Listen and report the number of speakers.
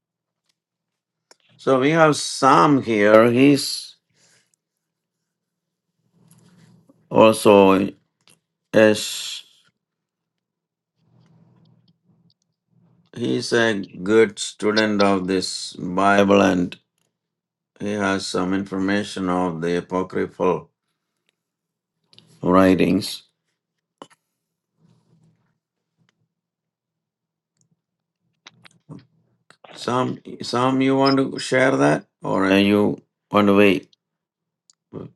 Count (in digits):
1